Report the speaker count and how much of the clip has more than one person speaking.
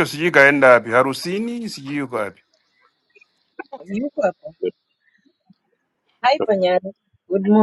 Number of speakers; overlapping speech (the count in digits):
2, no overlap